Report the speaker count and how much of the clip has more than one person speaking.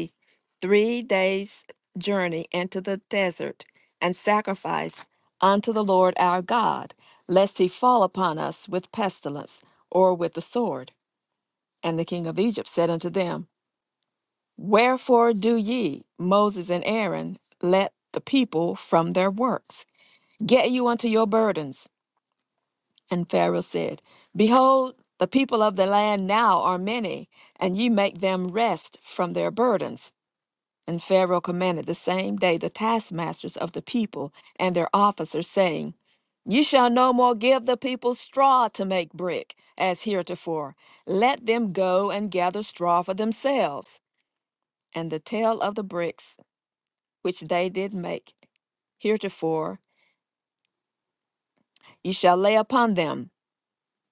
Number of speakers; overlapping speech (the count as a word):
one, no overlap